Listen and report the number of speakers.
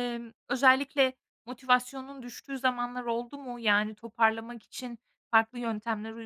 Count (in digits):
1